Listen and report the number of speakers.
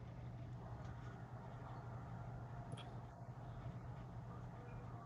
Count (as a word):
zero